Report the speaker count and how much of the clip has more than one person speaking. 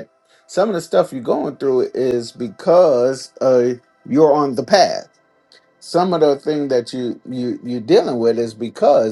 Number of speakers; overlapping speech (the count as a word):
one, no overlap